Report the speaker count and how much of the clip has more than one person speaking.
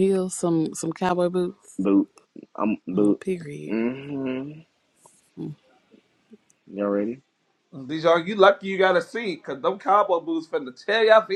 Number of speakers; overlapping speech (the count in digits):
3, about 3%